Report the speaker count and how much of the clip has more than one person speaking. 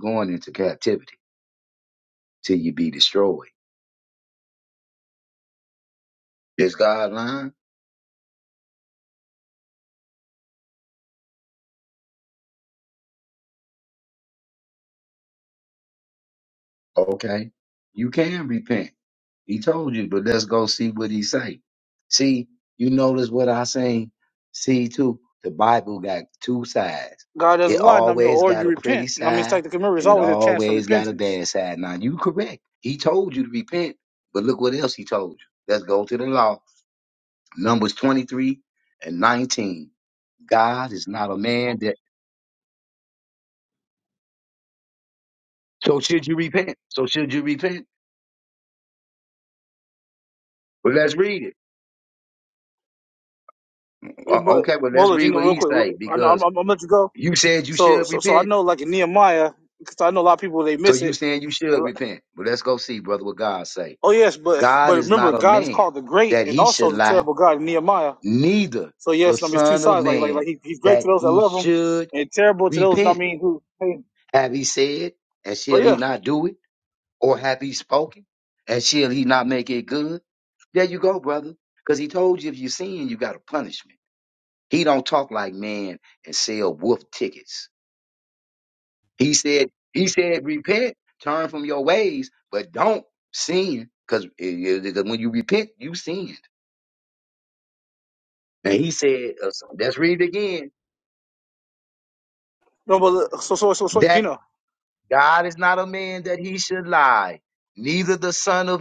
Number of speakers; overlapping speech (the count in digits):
2, about 10%